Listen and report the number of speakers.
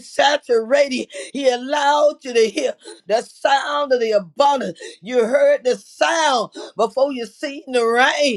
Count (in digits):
1